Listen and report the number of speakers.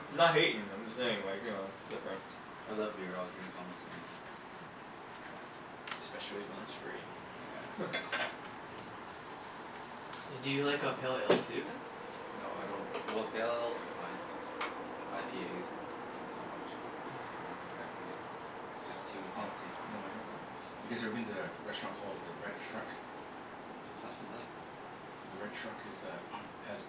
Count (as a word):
four